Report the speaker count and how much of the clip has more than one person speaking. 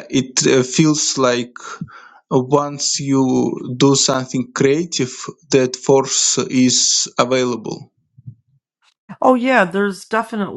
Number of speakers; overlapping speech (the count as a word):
two, no overlap